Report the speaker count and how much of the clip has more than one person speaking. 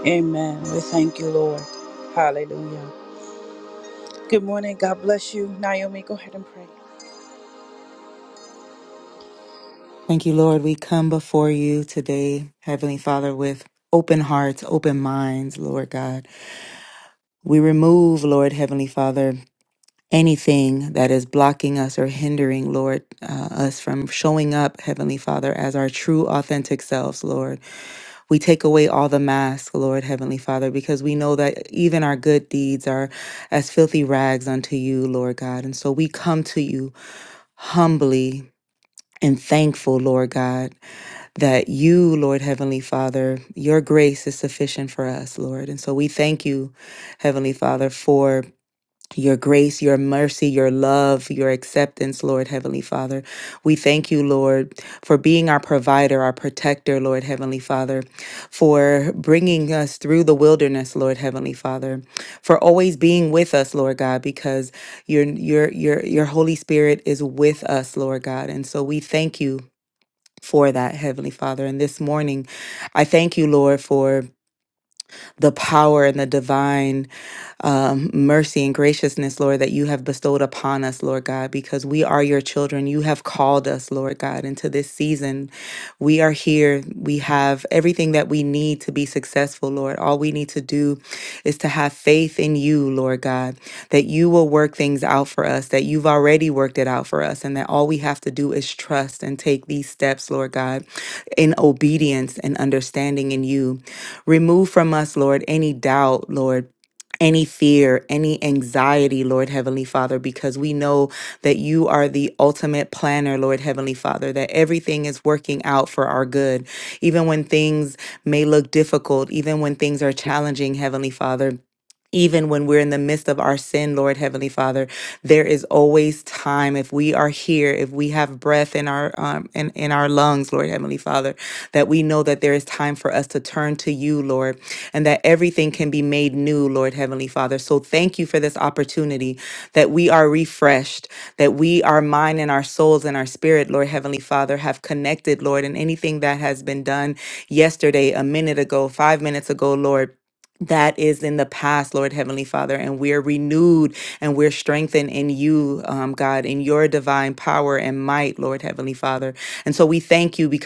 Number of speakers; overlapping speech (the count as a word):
two, no overlap